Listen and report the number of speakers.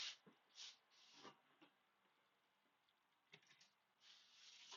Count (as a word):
zero